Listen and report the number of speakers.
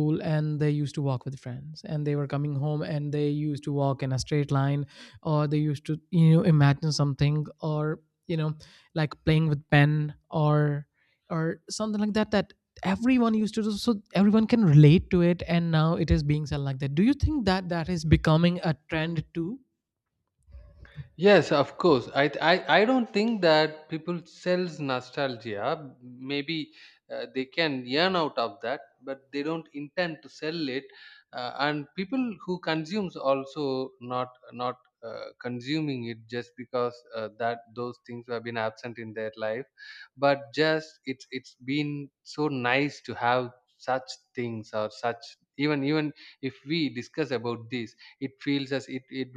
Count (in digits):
2